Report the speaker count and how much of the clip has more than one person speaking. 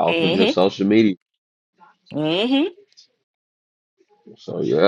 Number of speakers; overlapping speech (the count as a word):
two, about 10%